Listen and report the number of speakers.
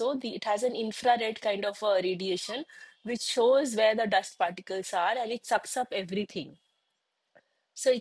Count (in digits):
1